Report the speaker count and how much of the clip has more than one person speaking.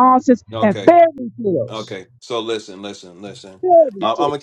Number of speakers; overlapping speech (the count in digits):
2, about 16%